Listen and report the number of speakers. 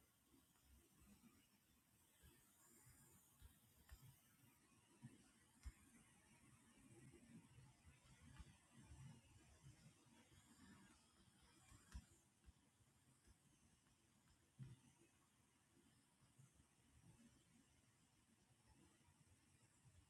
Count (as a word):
zero